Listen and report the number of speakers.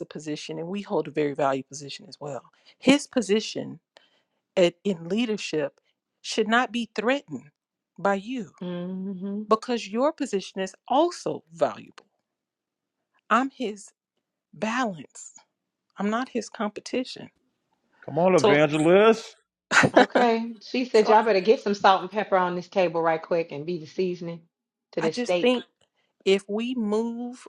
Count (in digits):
3